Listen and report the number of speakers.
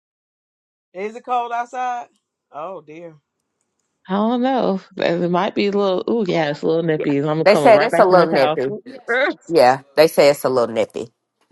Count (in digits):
3